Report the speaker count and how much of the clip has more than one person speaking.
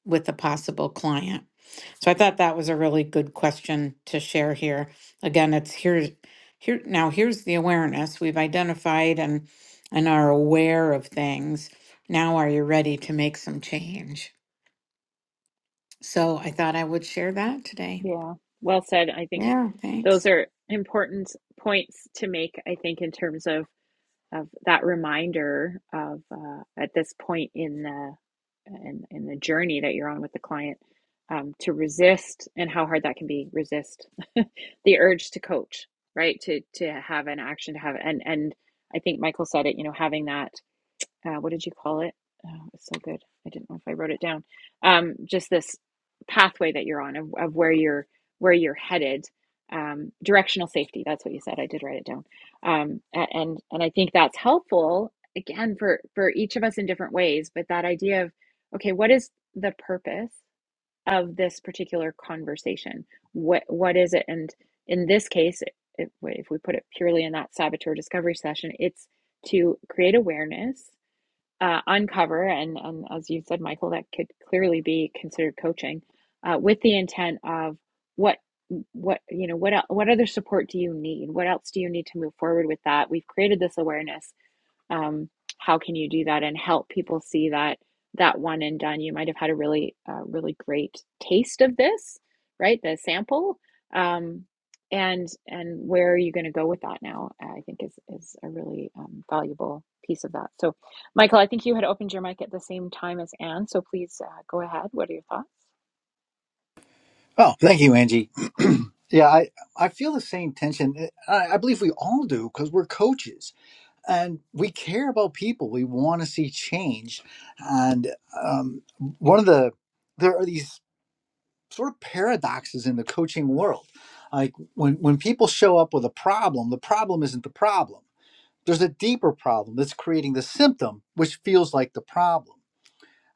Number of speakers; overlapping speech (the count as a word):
three, under 1%